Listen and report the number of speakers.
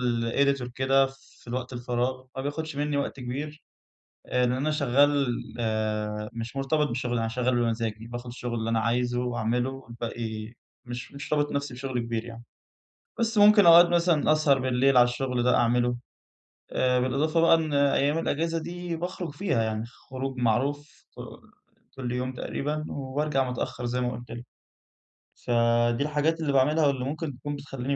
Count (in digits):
1